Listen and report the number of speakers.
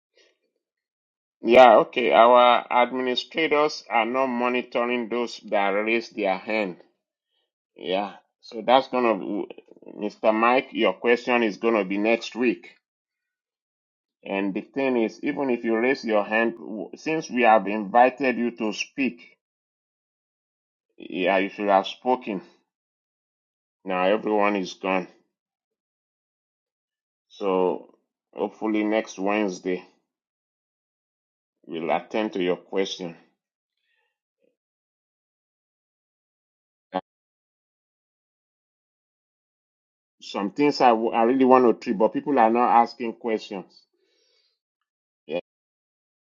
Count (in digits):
1